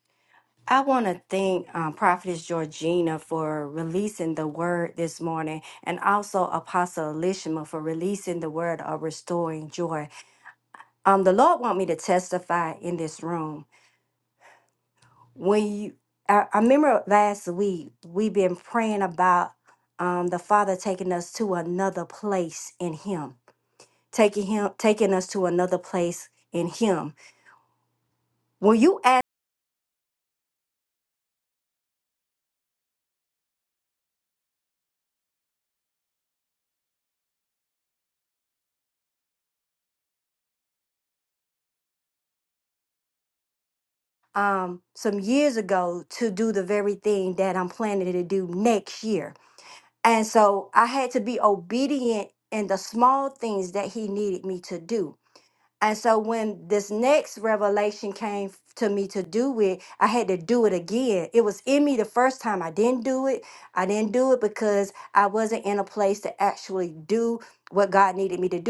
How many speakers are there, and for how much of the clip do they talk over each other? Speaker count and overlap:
one, no overlap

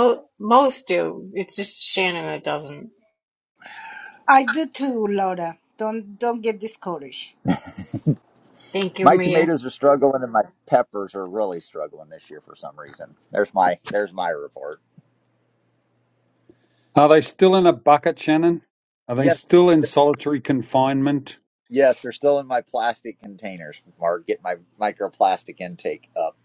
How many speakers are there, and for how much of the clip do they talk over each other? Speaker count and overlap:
four, about 3%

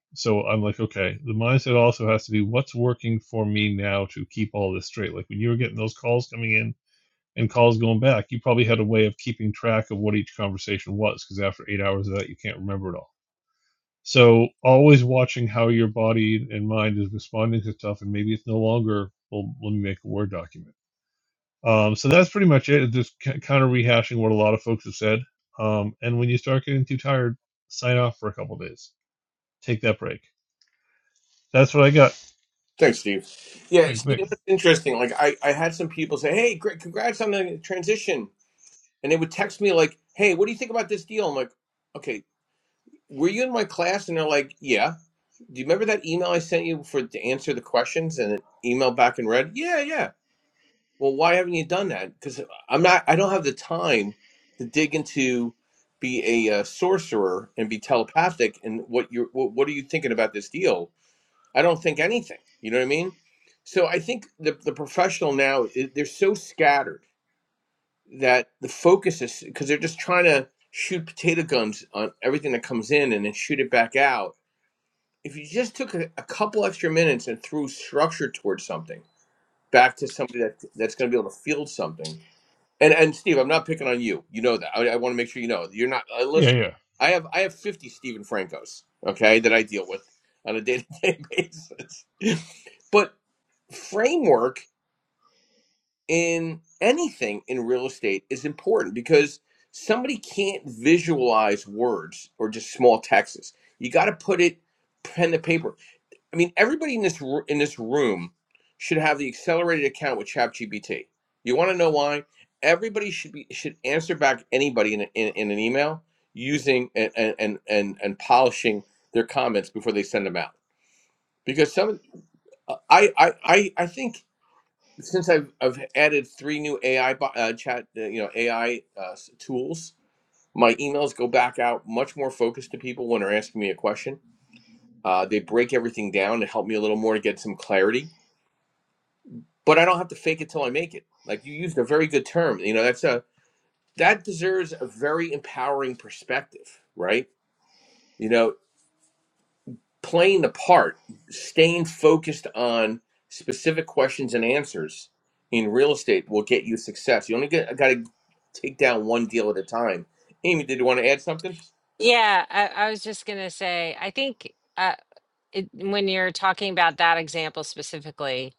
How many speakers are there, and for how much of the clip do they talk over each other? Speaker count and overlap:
three, under 1%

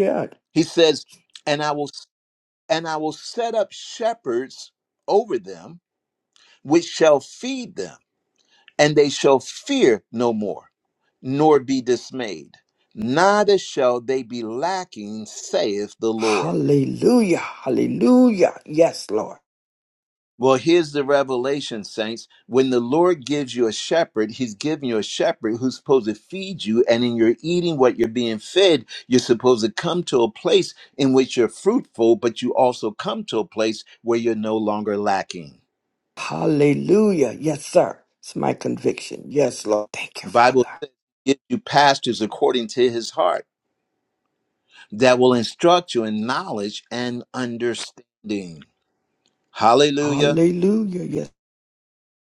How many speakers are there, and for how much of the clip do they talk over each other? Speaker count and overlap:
two, about 2%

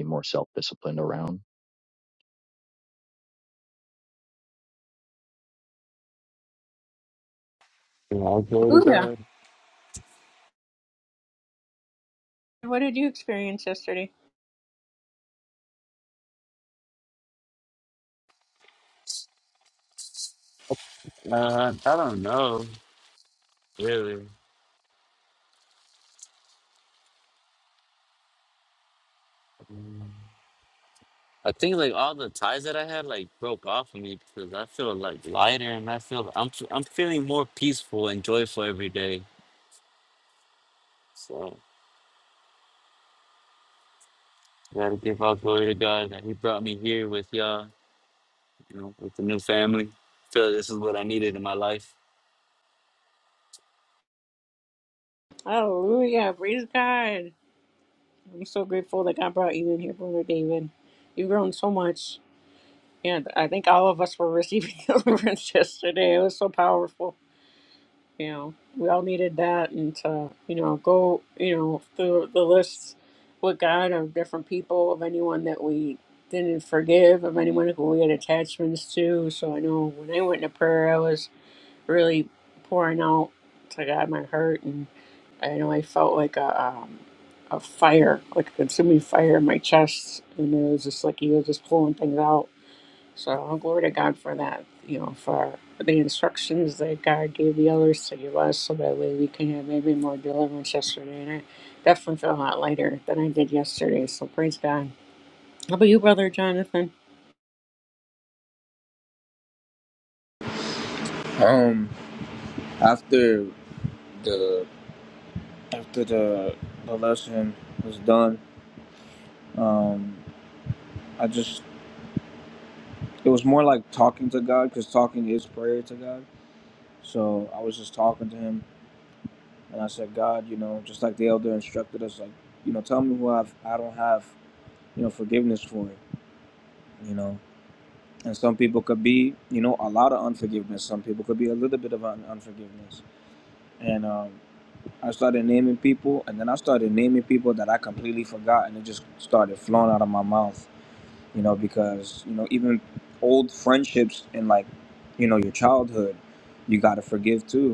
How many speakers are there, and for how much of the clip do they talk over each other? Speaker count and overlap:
four, under 1%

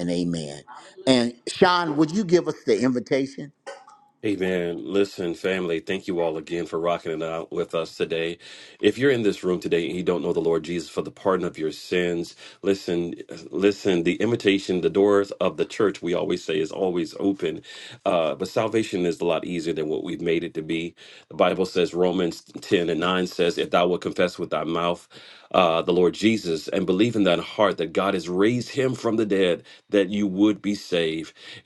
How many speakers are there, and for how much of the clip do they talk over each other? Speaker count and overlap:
two, no overlap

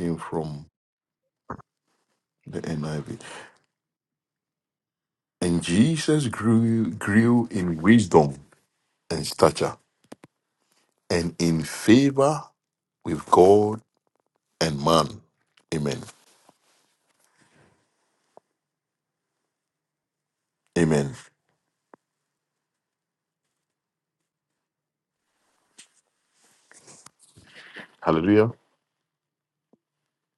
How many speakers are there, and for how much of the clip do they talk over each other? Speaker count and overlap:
one, no overlap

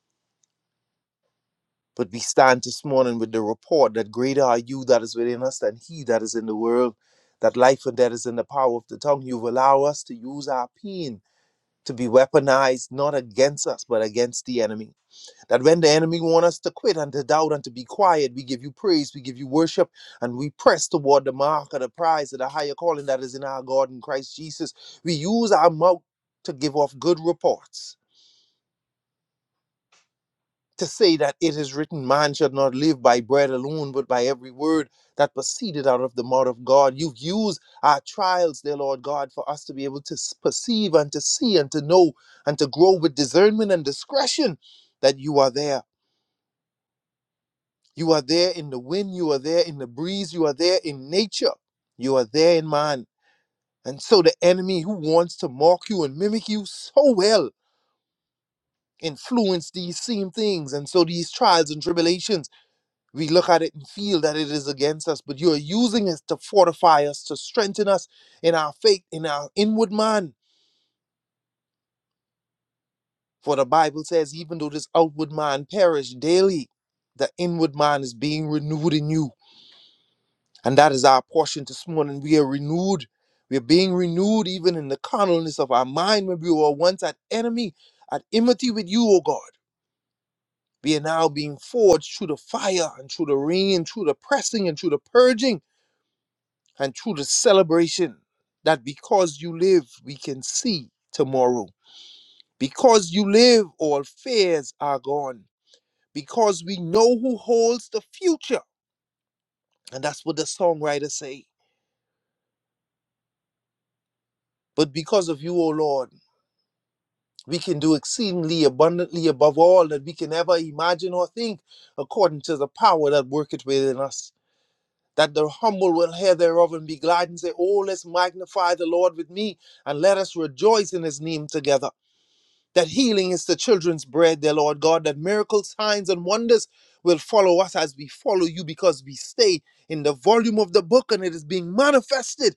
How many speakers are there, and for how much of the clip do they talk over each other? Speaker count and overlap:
one, no overlap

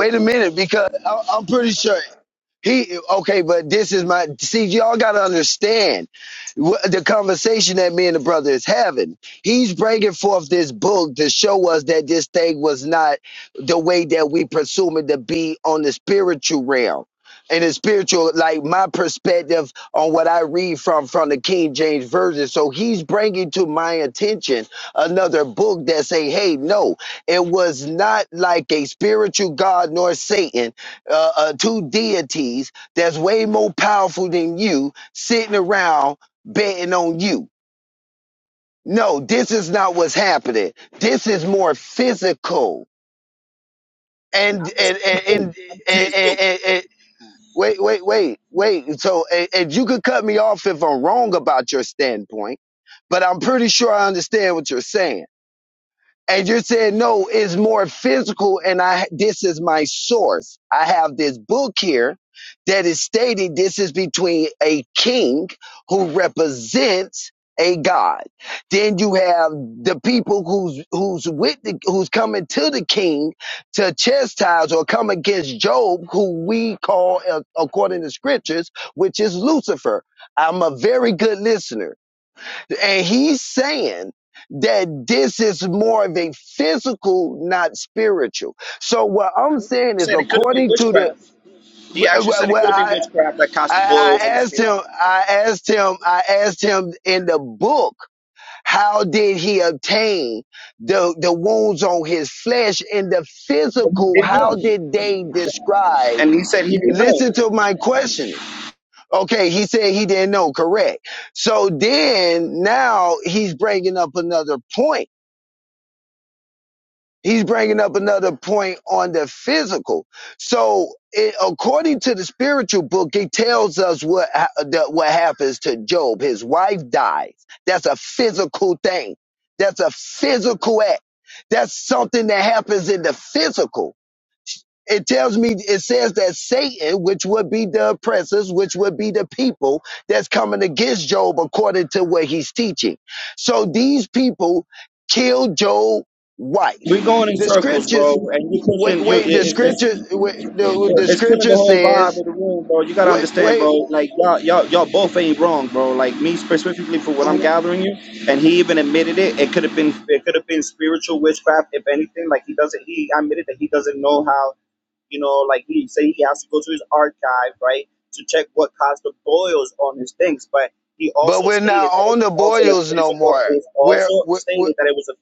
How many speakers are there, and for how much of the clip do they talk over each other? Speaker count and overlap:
two, about 7%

